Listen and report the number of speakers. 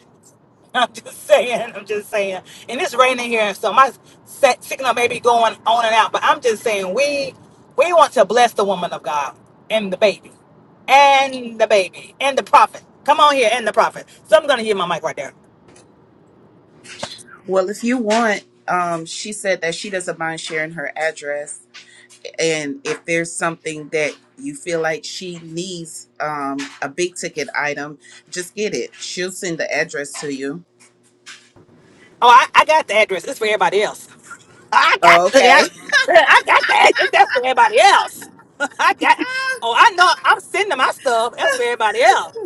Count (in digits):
2